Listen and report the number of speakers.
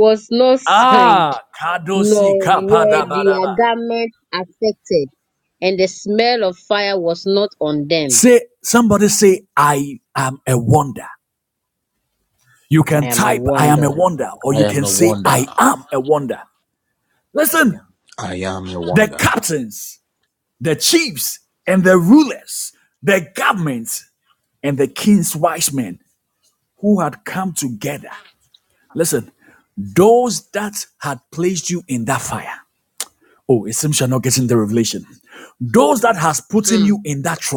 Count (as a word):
three